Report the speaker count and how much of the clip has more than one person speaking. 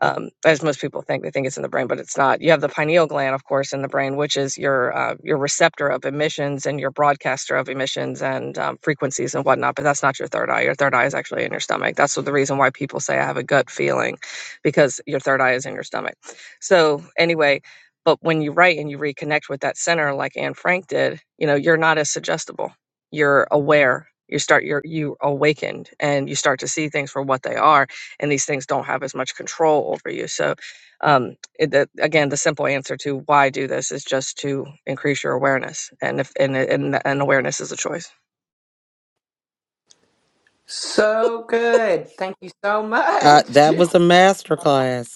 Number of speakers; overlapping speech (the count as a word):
three, about 1%